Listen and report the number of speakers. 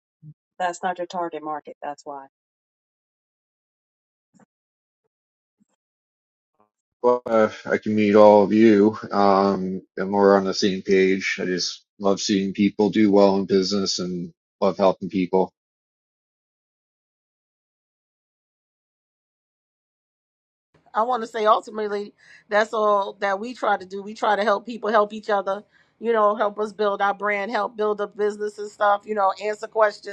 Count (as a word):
three